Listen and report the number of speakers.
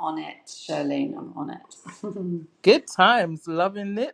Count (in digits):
2